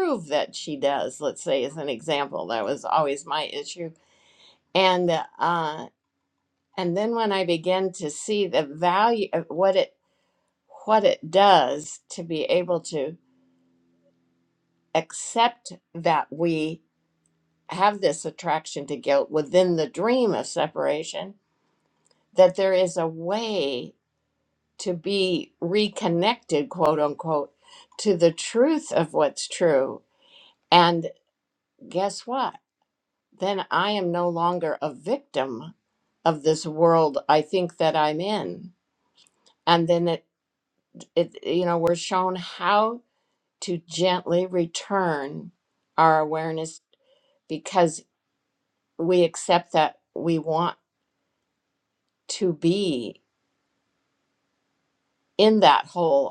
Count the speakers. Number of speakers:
1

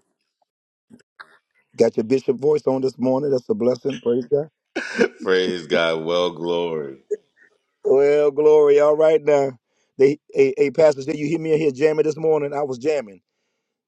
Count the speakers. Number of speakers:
2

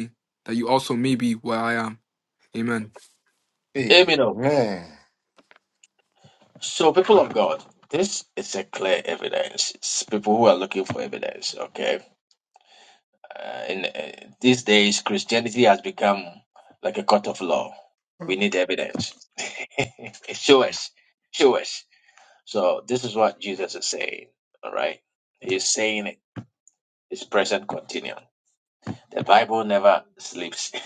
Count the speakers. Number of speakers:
3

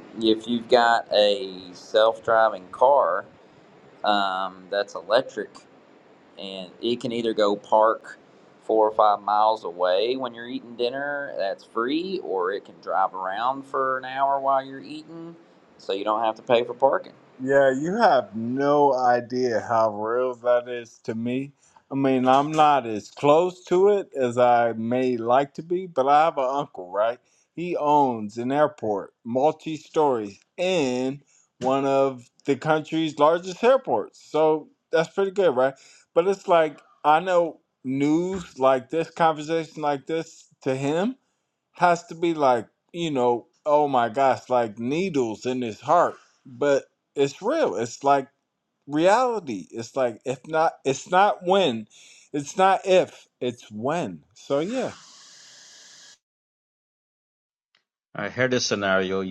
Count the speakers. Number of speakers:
3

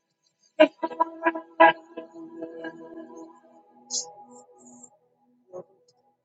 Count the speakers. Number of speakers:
0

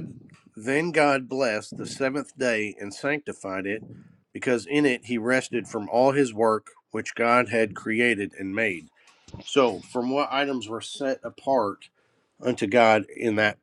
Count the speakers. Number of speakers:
1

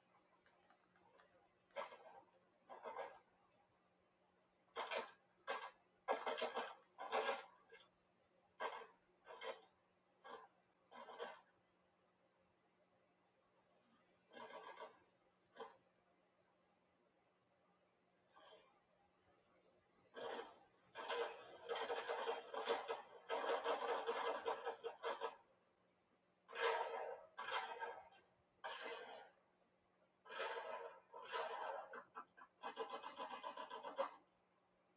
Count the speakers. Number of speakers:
0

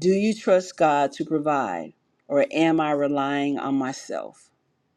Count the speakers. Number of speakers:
1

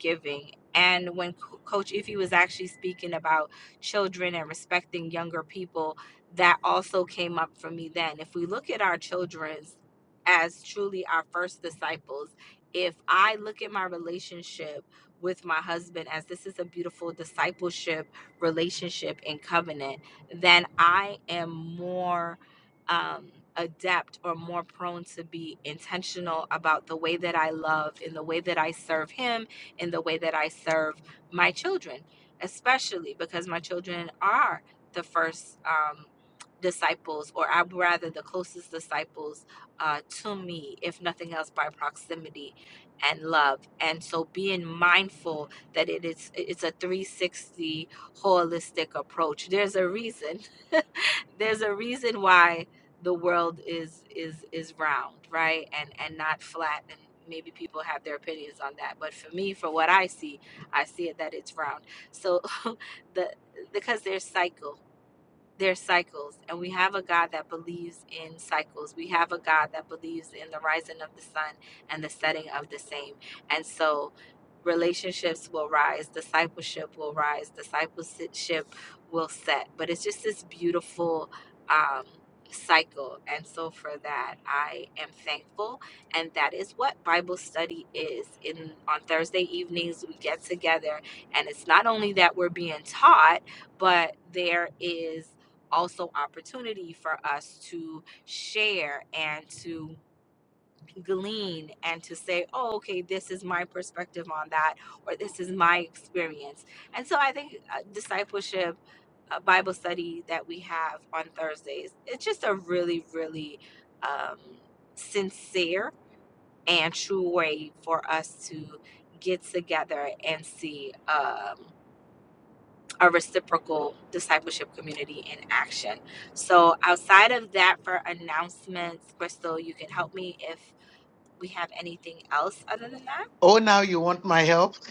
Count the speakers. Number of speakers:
2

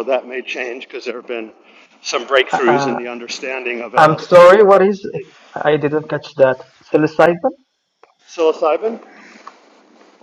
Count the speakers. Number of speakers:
2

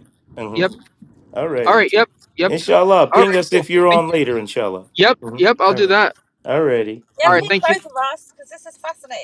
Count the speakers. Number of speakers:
3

